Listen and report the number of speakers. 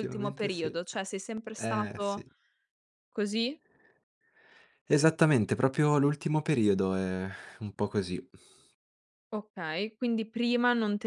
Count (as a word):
two